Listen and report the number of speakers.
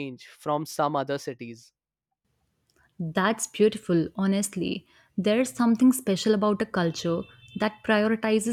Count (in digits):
2